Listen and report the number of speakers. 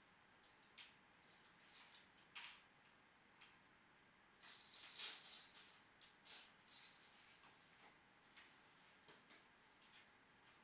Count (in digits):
0